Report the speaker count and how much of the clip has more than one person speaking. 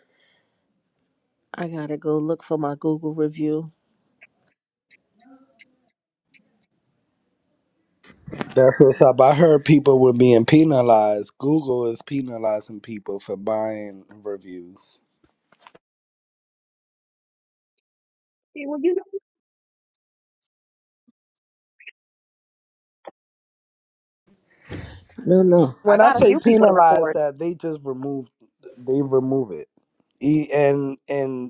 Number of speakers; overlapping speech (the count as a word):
three, about 4%